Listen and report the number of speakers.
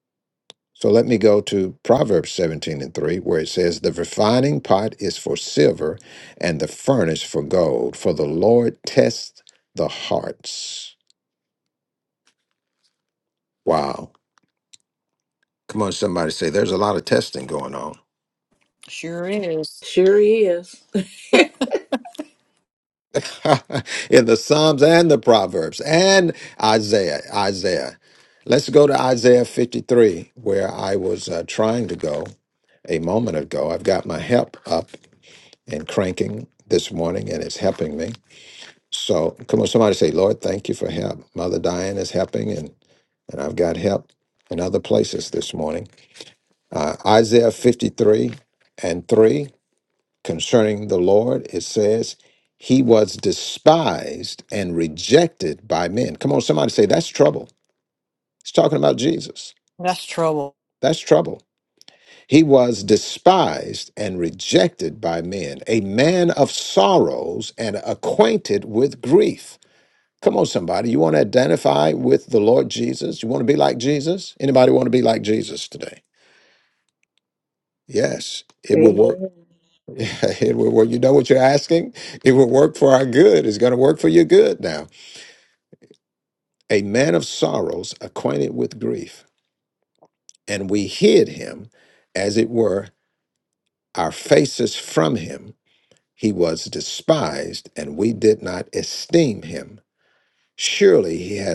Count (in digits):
3